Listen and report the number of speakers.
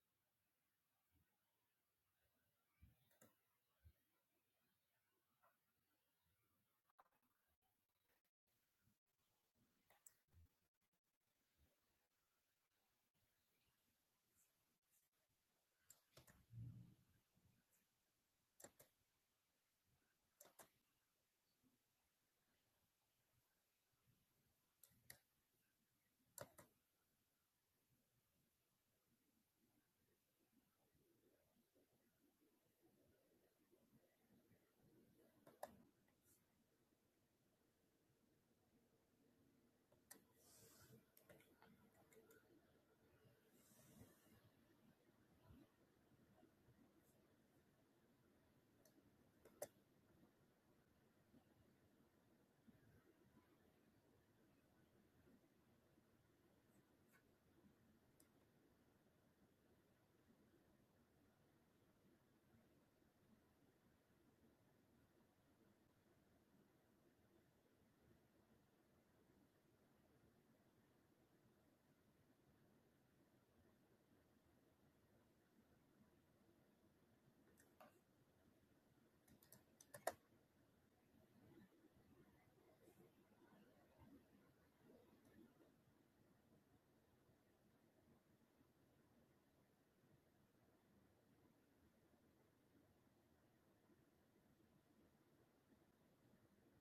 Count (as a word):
zero